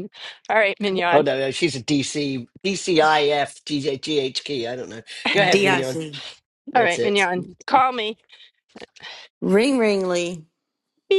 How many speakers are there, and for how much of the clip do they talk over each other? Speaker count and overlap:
3, about 11%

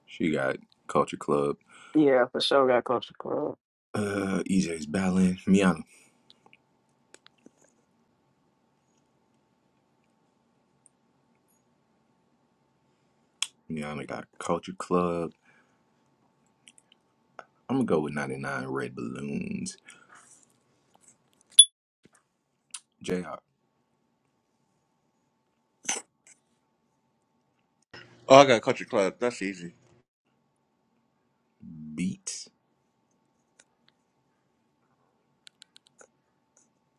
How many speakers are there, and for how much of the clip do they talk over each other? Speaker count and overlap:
3, no overlap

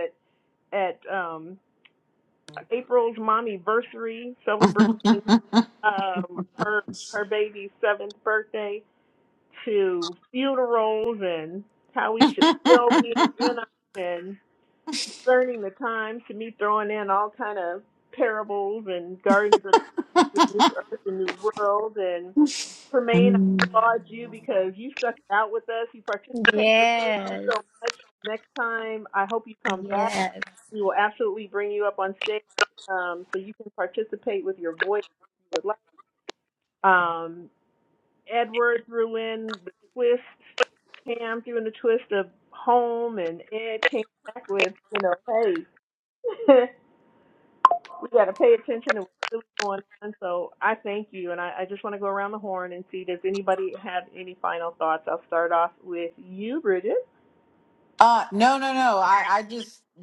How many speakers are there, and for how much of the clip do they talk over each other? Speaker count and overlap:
3, about 1%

